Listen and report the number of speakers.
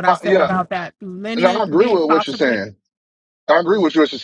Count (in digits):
2